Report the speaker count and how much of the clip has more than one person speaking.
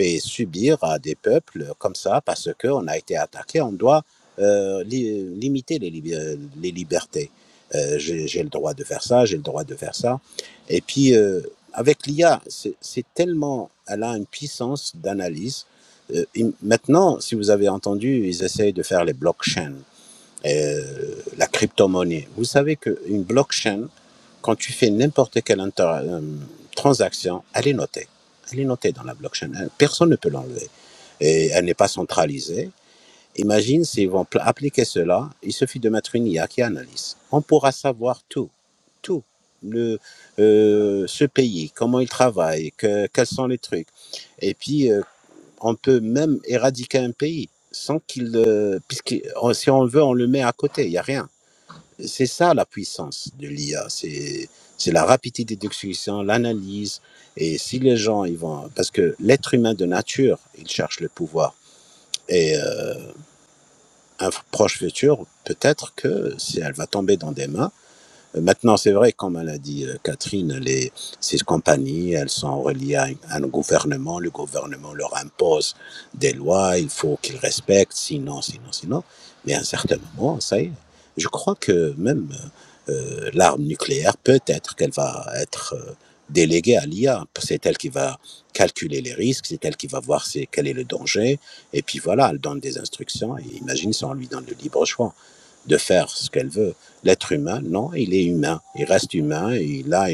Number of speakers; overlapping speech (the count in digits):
1, no overlap